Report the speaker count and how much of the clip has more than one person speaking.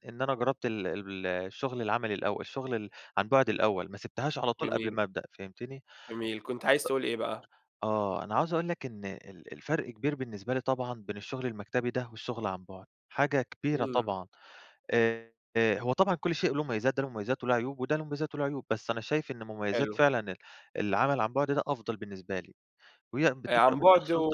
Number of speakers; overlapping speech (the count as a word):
two, about 8%